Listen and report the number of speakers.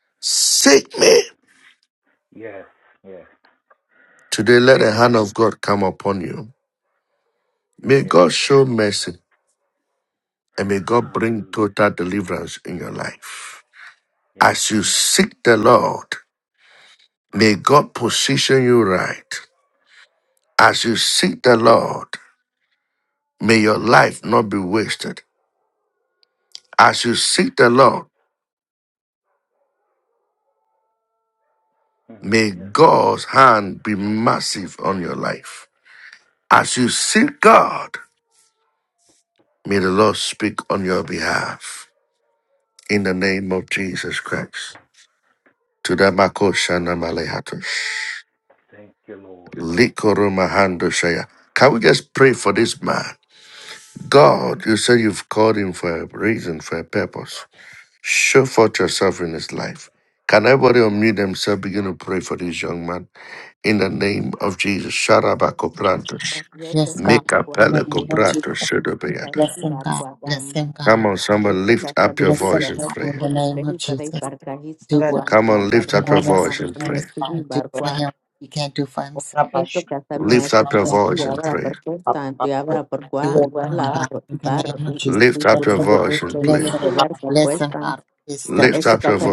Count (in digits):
4